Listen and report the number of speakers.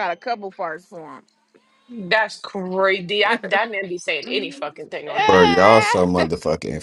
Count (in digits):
3